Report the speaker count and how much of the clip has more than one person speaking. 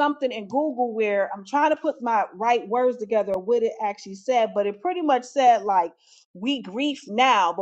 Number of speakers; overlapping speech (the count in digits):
1, no overlap